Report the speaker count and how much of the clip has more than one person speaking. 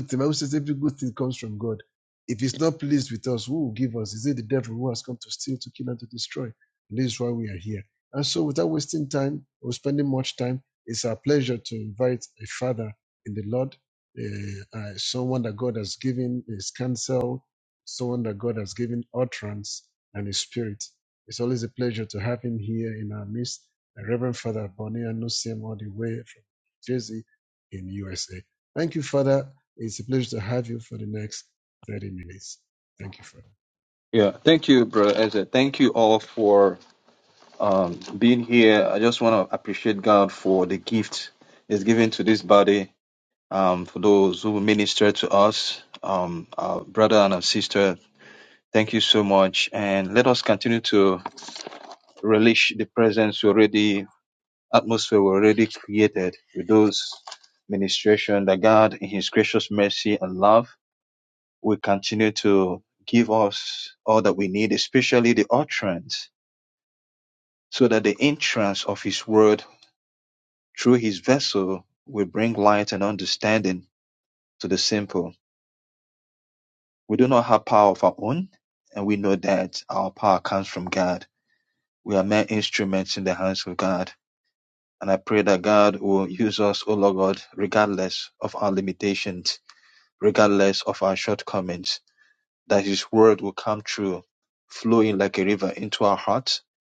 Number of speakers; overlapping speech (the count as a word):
two, no overlap